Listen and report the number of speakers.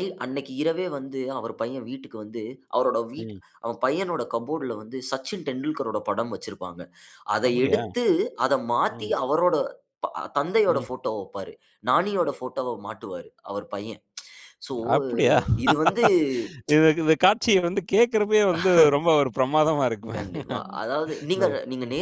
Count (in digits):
2